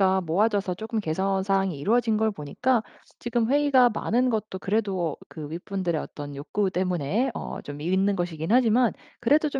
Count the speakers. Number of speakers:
1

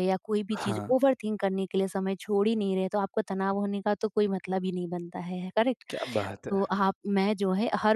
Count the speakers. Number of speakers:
2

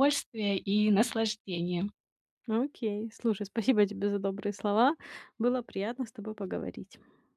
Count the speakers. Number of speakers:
2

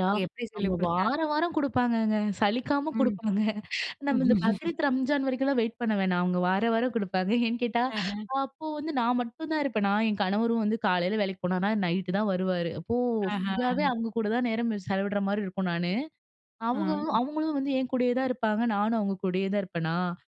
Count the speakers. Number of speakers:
2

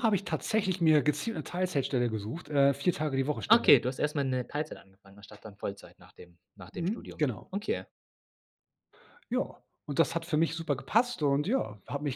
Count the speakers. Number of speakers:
2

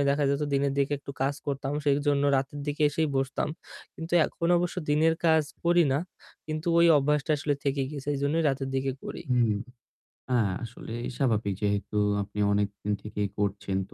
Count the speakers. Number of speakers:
2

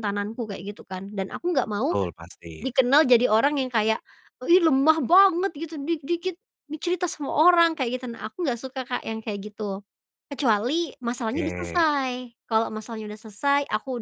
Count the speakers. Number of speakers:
2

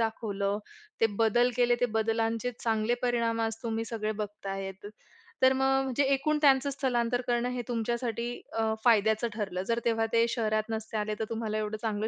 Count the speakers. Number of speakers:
1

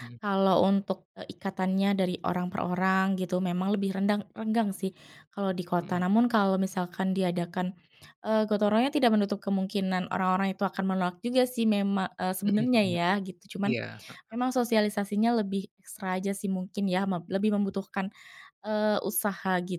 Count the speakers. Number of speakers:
2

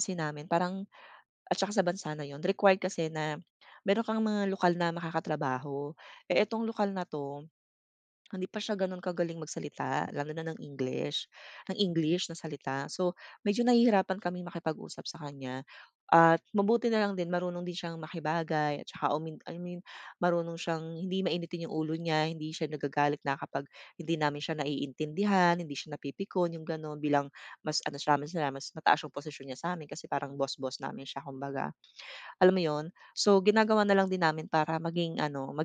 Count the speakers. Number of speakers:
1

